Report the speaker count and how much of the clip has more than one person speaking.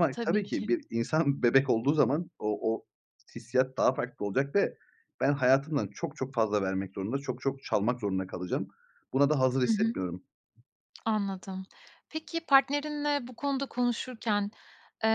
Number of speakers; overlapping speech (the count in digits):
2, about 6%